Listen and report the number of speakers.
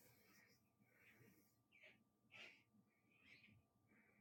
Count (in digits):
0